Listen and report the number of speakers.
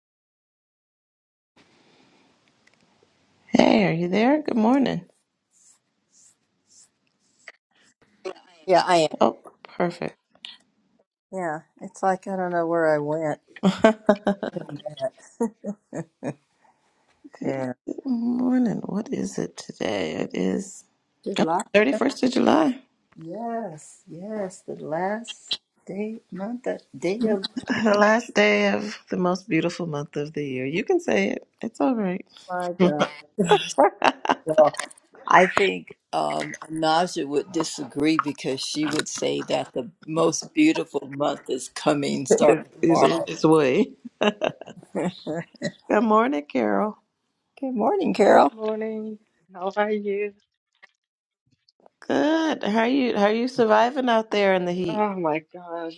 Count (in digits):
3